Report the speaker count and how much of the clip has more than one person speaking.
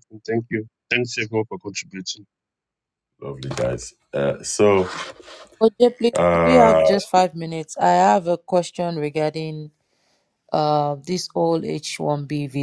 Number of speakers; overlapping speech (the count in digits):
3, about 6%